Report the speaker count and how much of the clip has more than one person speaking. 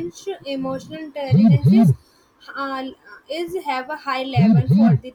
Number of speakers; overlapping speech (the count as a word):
one, no overlap